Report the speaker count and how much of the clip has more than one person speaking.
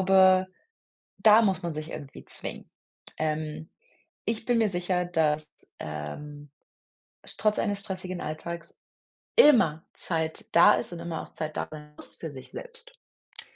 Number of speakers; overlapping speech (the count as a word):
one, no overlap